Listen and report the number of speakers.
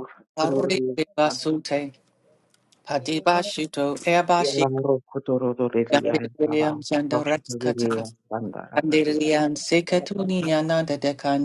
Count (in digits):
2